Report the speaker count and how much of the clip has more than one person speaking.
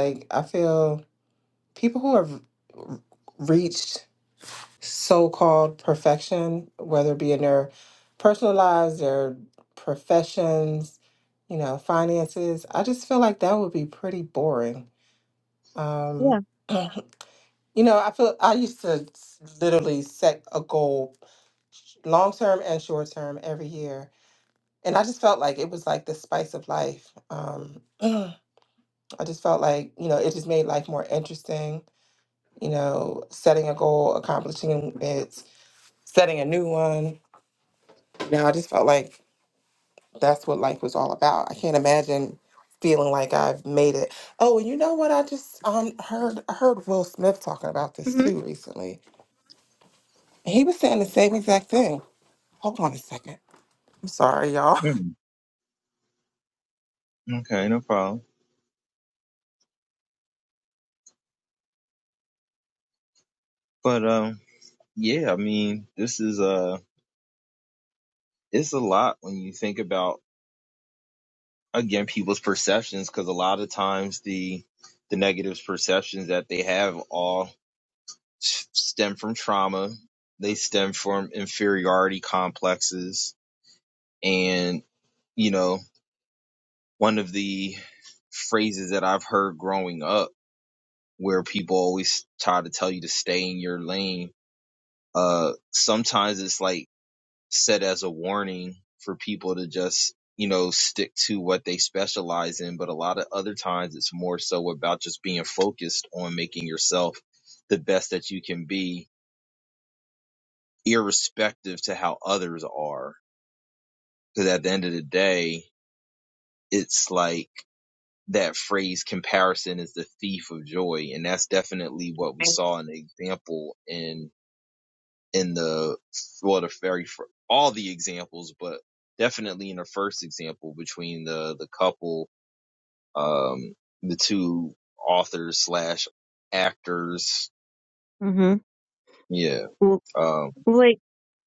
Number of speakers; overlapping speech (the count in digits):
3, under 1%